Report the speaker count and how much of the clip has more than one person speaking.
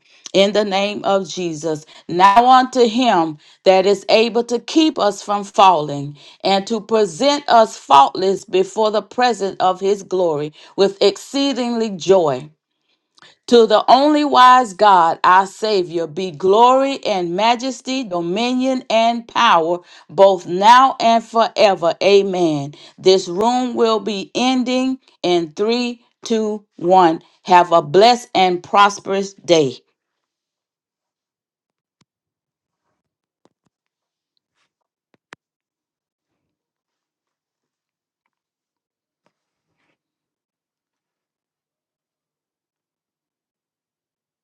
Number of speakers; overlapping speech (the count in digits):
1, no overlap